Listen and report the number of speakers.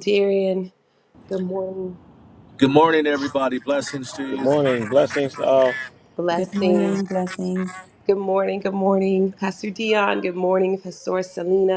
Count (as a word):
four